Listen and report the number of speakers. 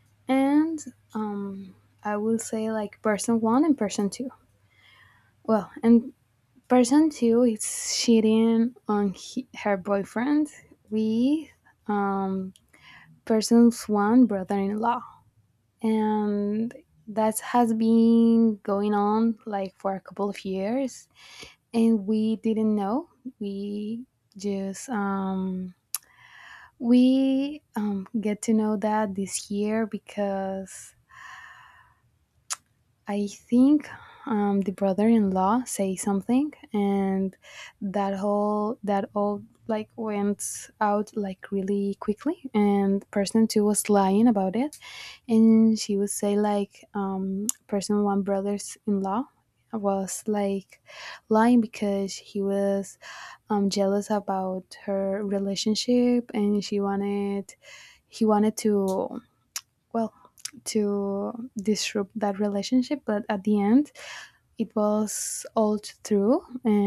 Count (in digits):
1